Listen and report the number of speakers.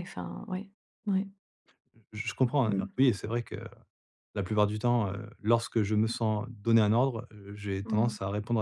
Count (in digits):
2